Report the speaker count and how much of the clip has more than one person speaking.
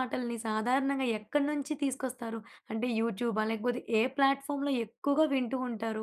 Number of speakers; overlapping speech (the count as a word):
one, no overlap